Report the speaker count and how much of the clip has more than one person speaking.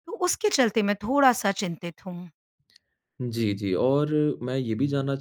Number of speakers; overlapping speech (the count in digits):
2, no overlap